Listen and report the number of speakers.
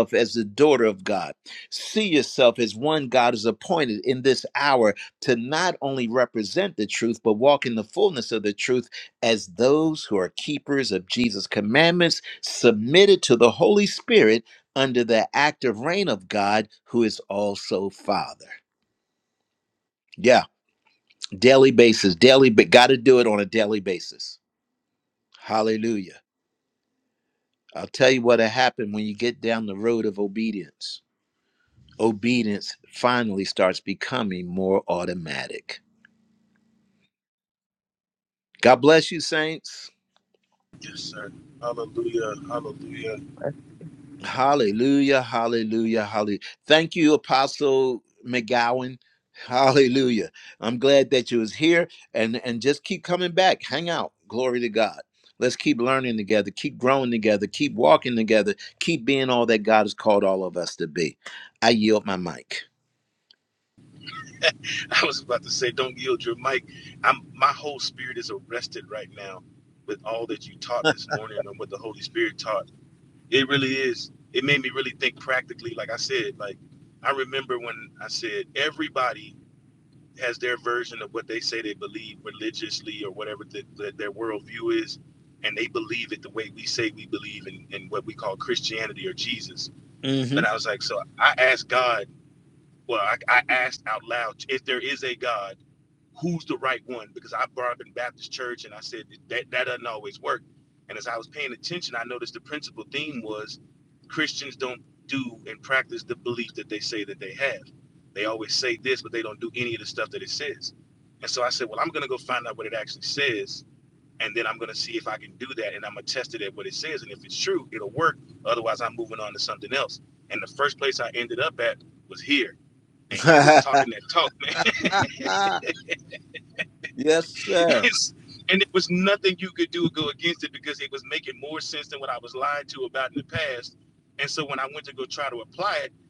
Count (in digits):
2